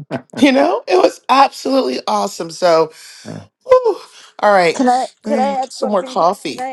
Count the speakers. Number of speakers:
two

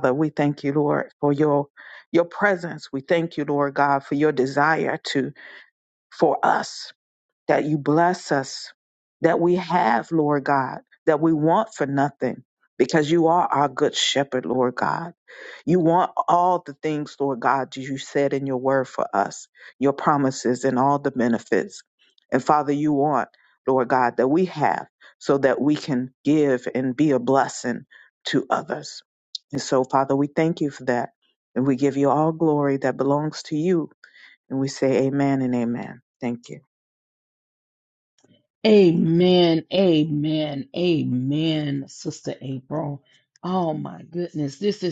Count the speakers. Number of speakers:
two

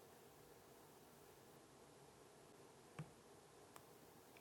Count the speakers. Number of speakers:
zero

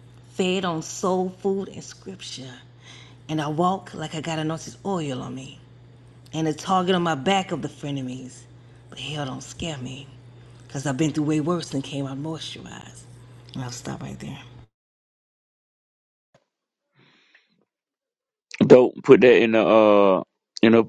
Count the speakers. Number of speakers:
two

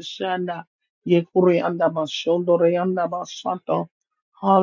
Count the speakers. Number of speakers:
one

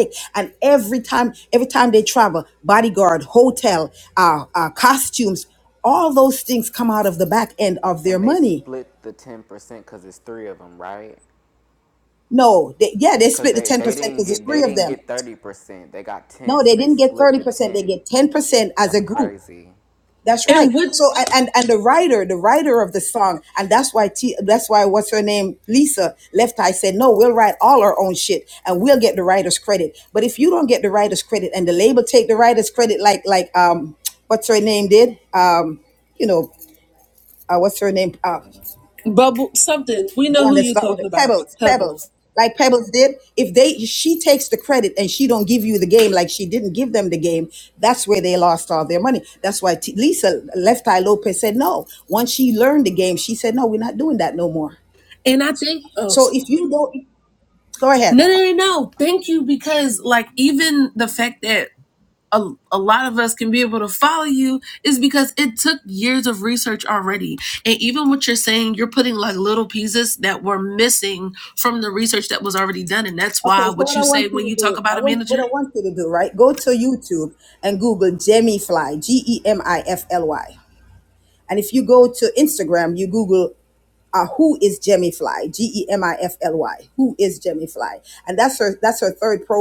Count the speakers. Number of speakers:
three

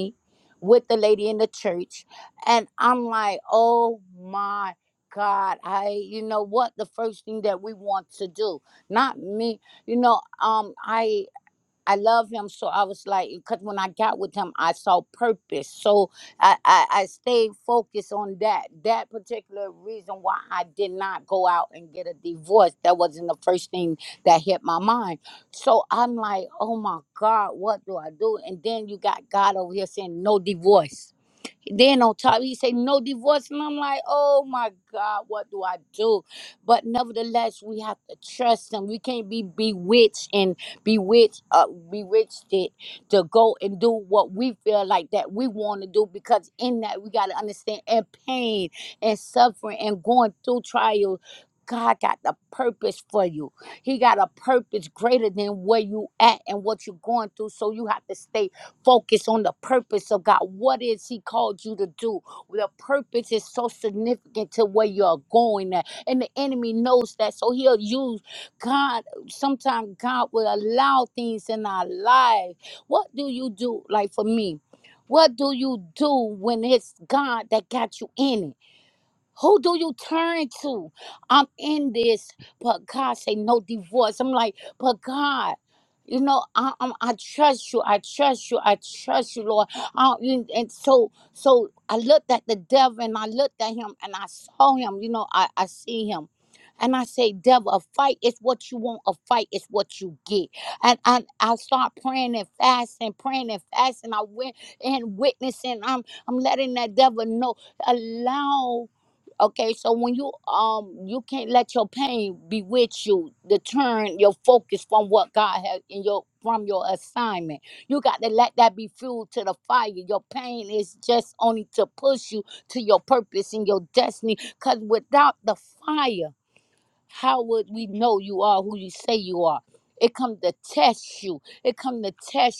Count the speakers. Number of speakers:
one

